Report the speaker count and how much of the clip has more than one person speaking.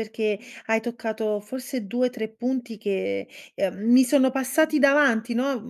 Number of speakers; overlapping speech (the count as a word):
one, no overlap